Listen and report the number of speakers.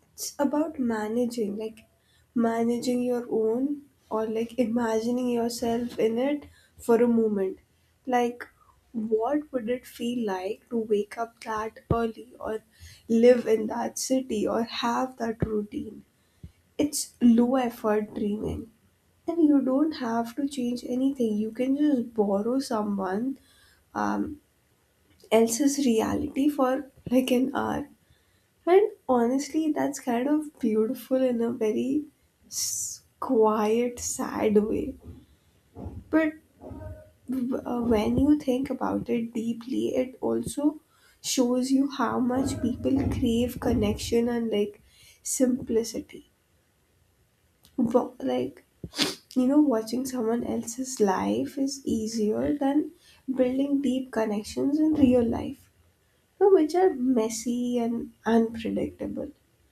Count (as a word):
one